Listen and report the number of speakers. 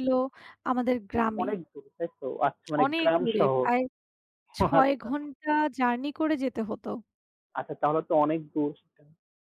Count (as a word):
two